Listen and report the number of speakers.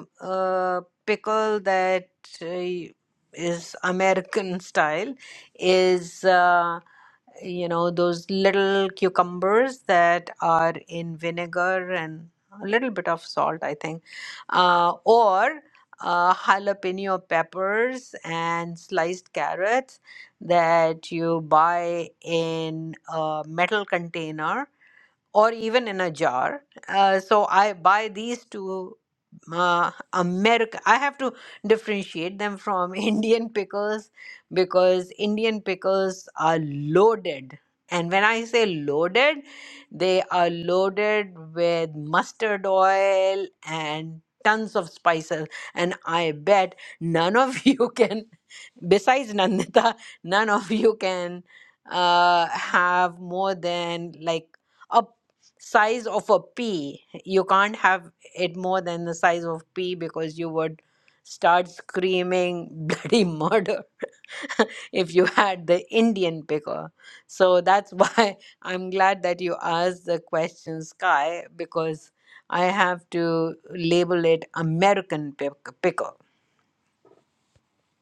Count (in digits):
1